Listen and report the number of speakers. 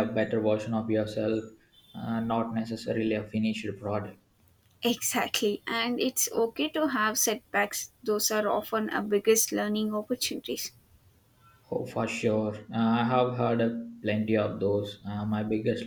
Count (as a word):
two